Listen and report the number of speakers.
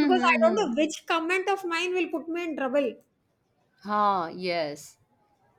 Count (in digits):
2